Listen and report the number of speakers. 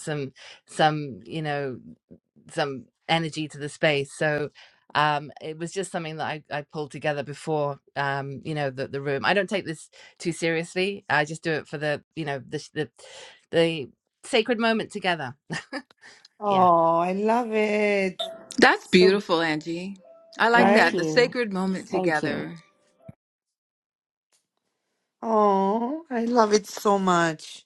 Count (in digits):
3